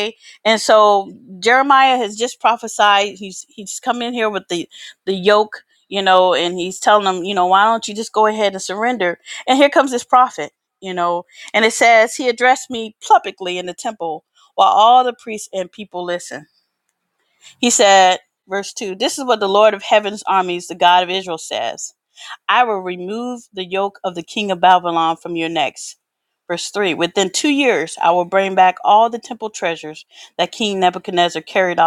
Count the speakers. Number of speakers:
1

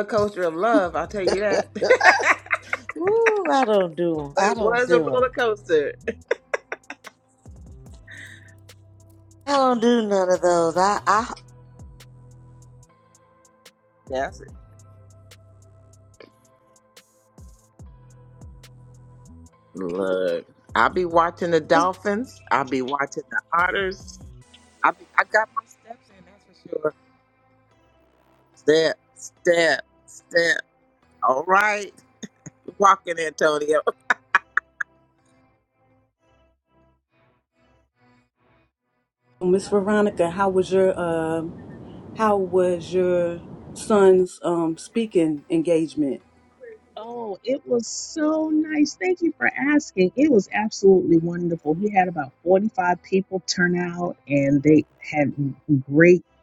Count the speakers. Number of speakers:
4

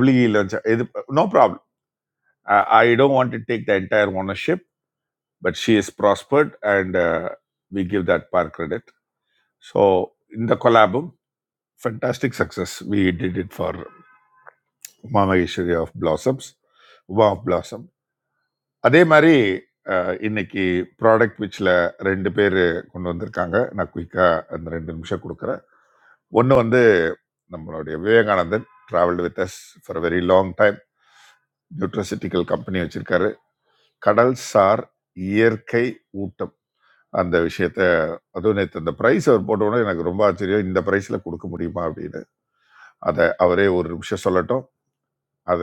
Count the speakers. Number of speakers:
1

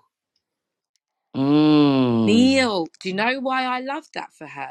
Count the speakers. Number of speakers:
2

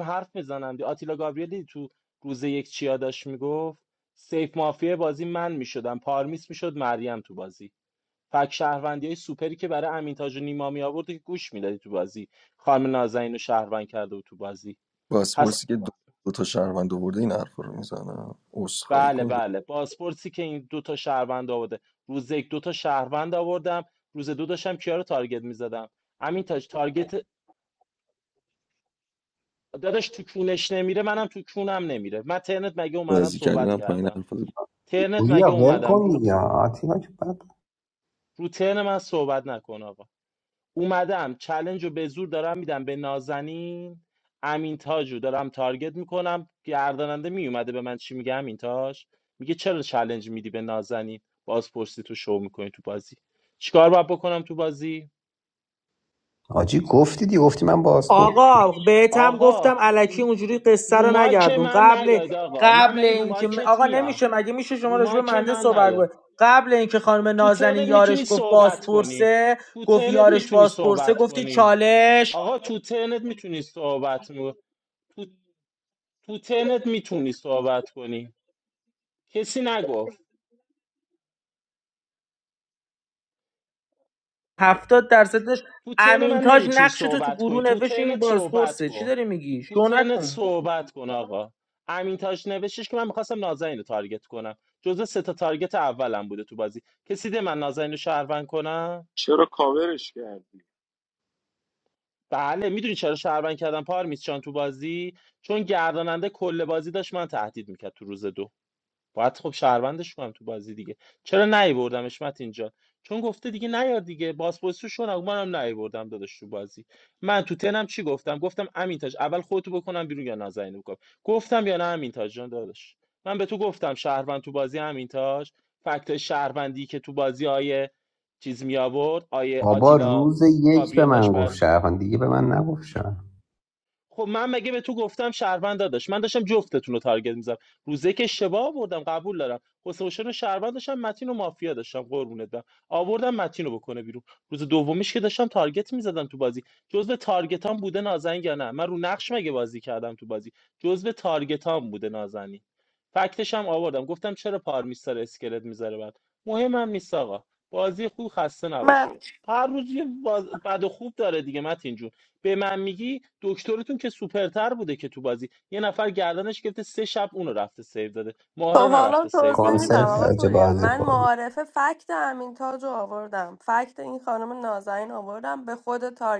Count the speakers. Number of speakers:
6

